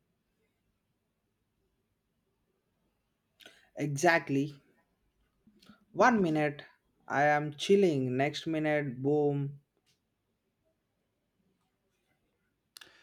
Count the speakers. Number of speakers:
one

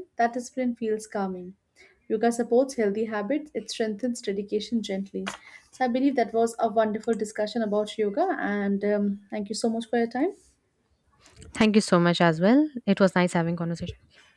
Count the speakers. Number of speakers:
two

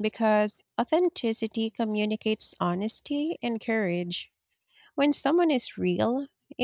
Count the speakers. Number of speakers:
one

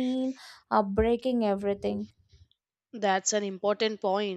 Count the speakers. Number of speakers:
two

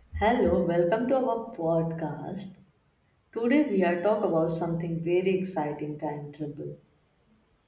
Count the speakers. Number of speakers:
one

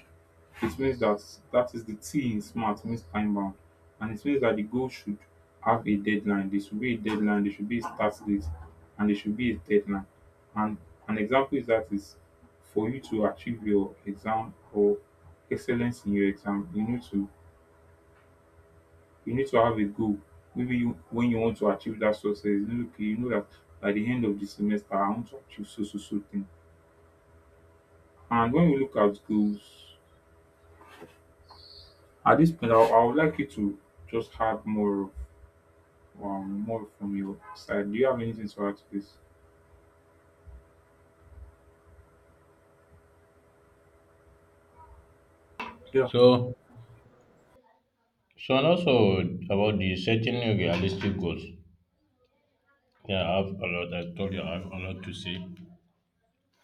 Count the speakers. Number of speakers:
two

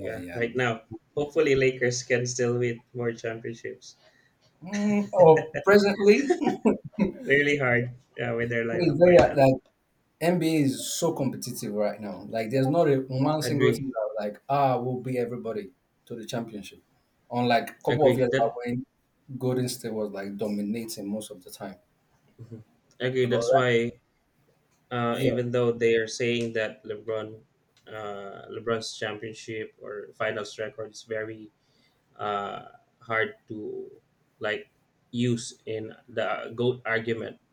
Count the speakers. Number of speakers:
two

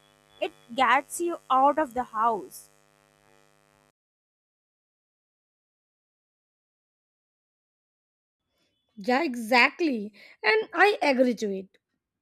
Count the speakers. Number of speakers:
two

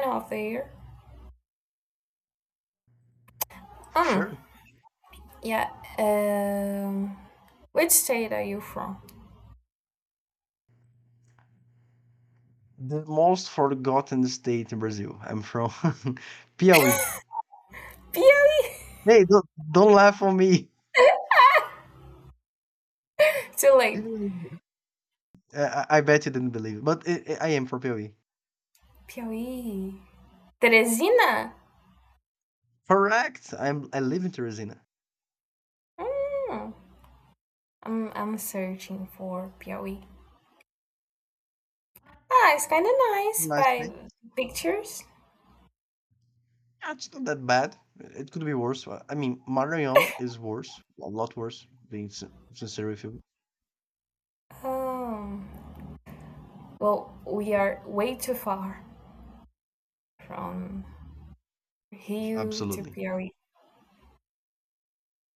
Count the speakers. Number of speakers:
two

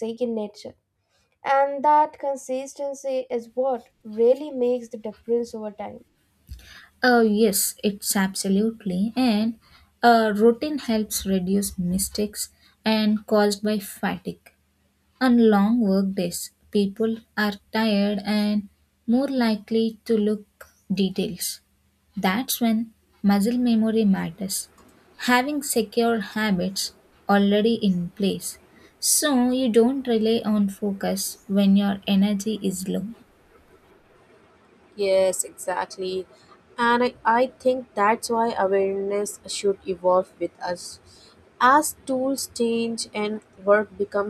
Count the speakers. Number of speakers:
three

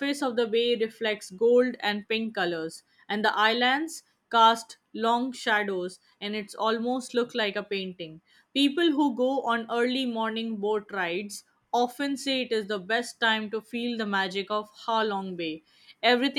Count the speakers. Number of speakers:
one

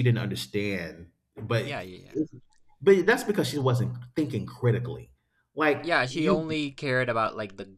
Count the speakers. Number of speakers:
two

